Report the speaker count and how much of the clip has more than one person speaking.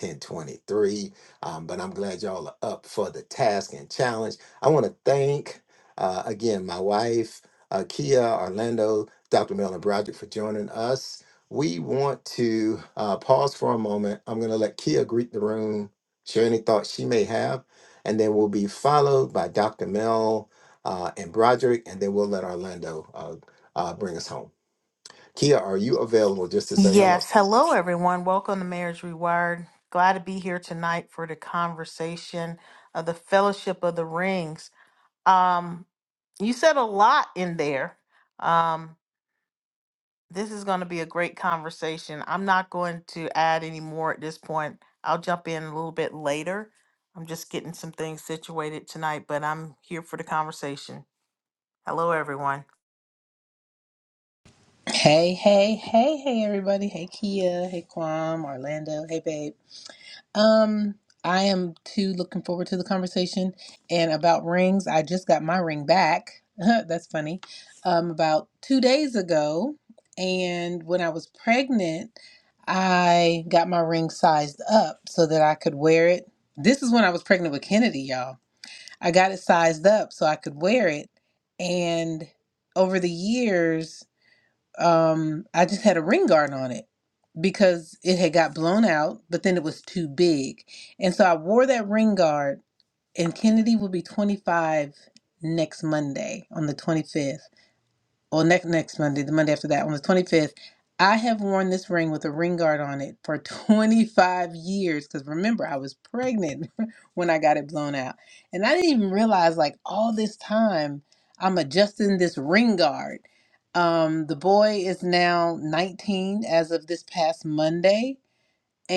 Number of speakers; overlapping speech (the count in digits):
3, under 1%